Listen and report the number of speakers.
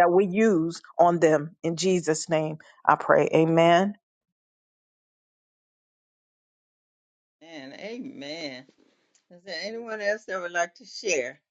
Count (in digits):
2